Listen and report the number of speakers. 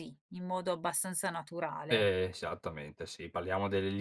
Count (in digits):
2